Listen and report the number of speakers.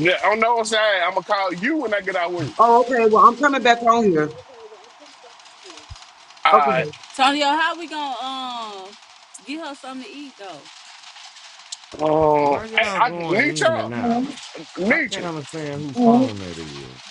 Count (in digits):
4